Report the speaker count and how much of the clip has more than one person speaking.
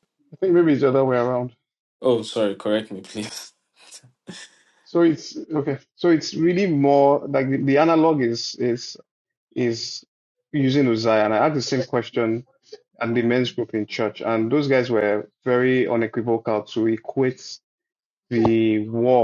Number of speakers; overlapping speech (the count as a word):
two, no overlap